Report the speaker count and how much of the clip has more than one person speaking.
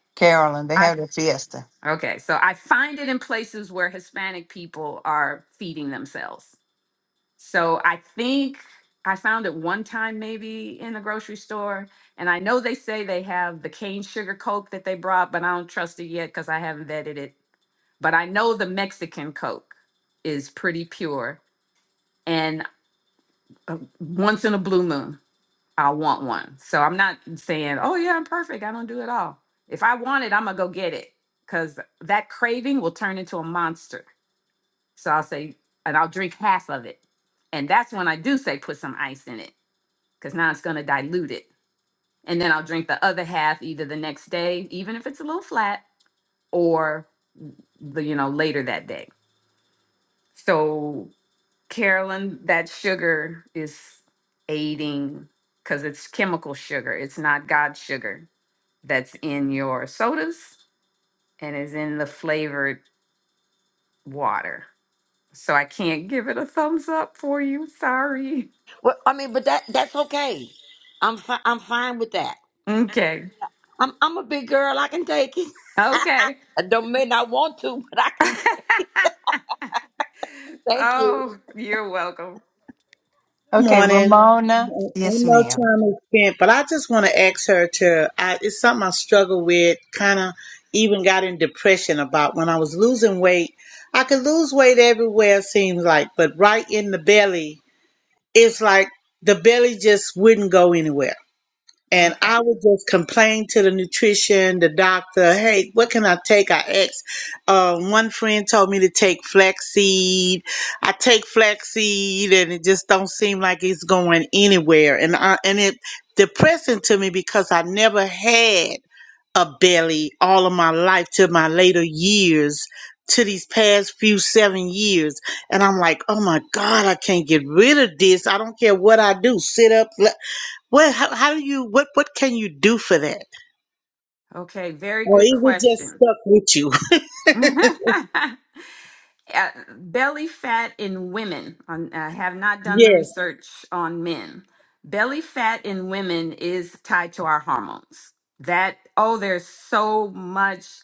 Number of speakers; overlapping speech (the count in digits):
4, about 3%